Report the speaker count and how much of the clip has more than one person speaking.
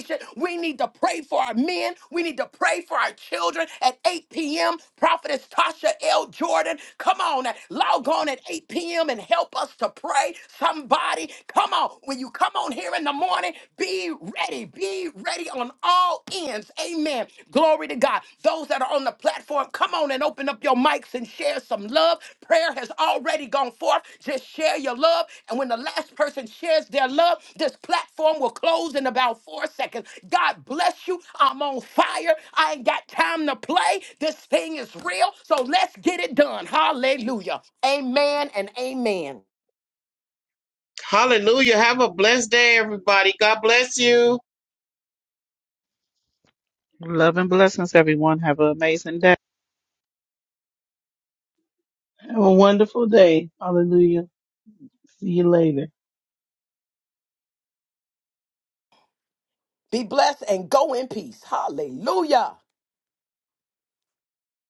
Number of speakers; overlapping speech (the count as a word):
four, no overlap